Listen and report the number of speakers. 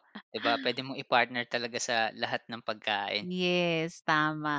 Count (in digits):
2